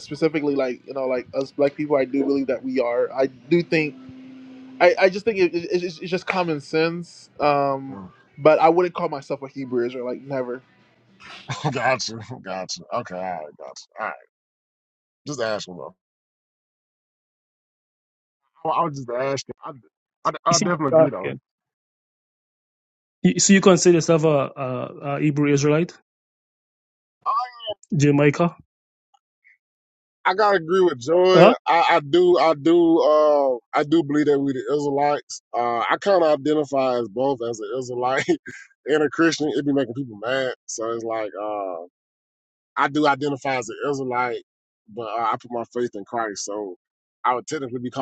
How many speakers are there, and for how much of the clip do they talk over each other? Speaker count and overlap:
three, about 2%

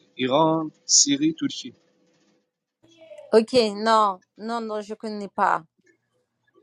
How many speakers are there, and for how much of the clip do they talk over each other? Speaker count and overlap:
two, no overlap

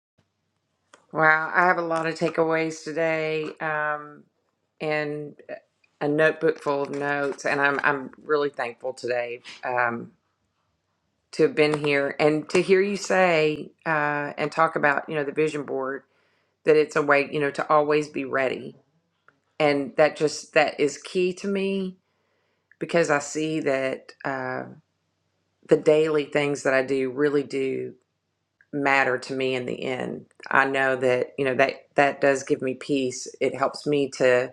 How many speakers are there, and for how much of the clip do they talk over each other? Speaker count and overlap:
one, no overlap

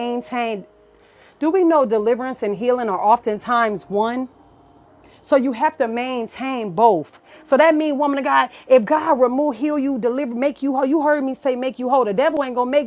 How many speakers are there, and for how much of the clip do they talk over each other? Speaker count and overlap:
one, no overlap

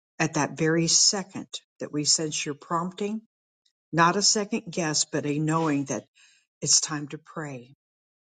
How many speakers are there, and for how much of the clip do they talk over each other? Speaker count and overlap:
one, no overlap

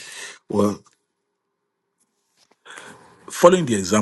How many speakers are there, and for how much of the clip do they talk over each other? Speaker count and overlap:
one, no overlap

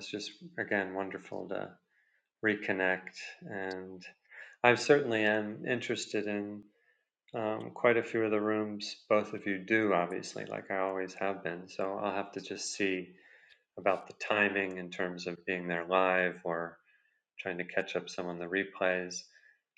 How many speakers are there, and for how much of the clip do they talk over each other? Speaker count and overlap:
one, no overlap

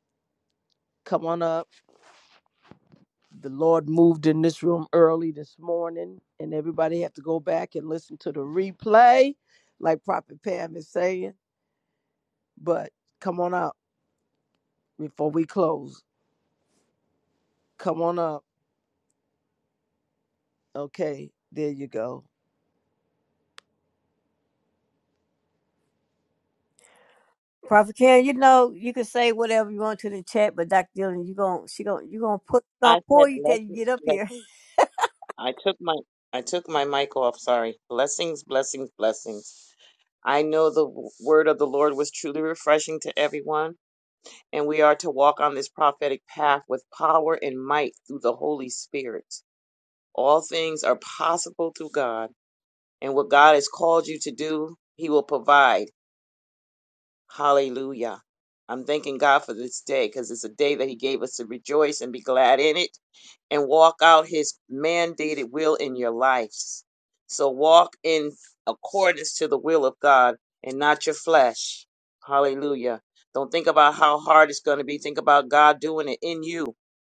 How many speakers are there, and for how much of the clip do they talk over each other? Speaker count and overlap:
three, about 2%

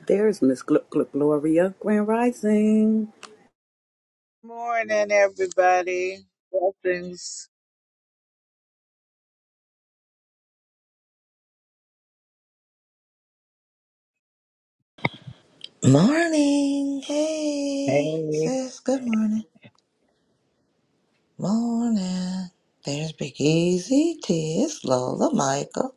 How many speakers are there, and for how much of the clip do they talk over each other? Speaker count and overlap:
three, about 1%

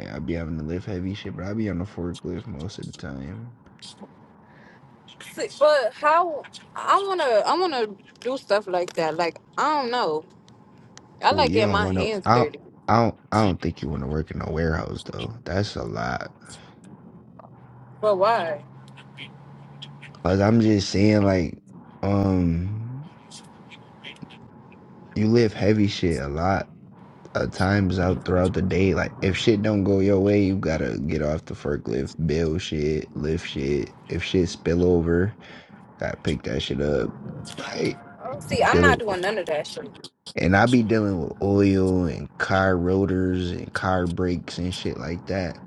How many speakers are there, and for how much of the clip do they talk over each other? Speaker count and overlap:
two, about 3%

